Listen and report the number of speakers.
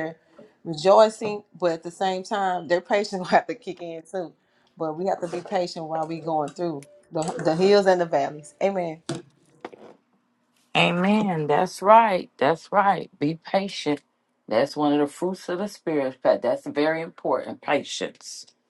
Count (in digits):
2